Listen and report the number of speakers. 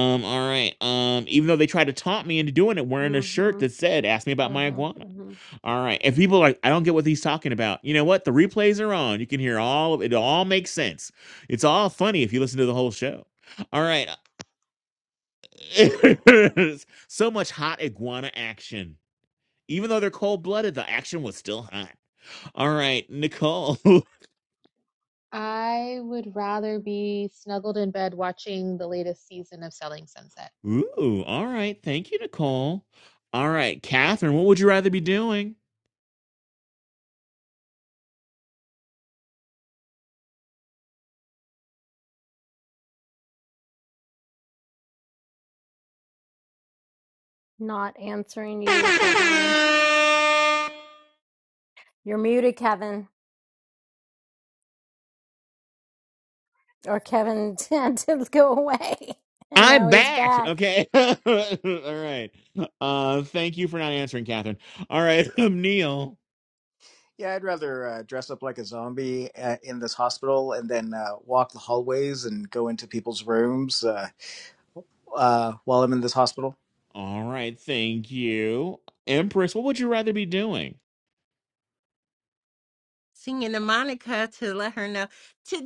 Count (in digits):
5